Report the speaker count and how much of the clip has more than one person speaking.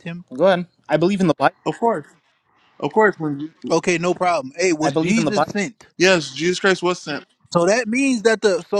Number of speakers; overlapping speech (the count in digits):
3, about 9%